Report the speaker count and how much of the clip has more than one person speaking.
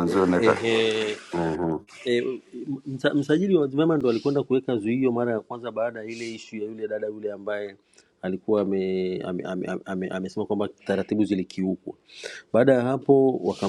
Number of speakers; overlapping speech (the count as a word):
two, about 2%